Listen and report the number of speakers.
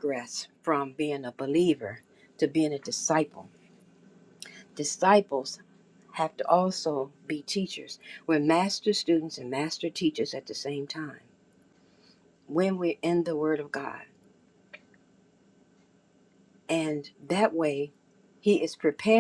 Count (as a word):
one